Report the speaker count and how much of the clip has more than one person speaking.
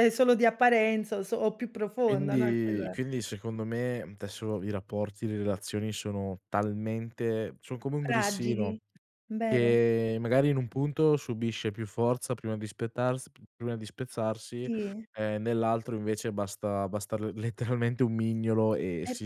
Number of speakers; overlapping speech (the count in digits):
2, about 11%